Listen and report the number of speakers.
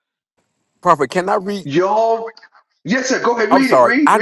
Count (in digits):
2